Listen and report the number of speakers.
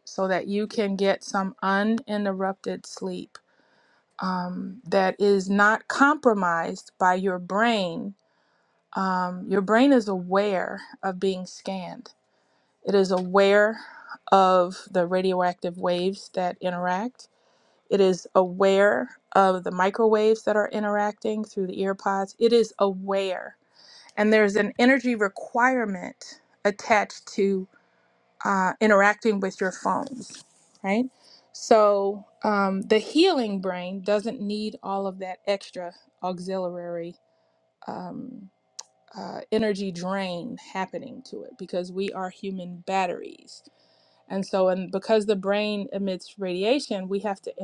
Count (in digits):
1